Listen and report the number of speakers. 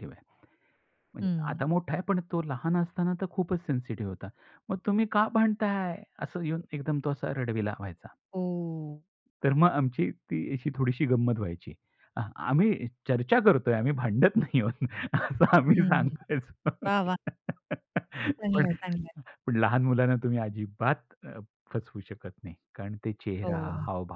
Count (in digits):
2